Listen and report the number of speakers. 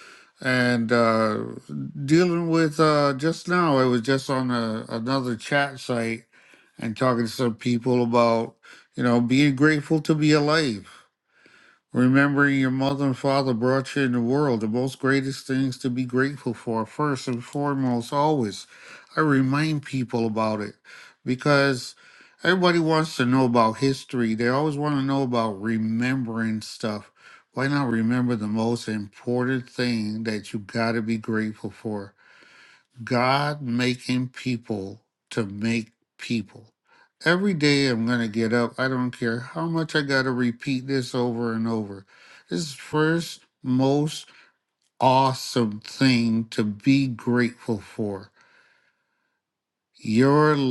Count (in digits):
1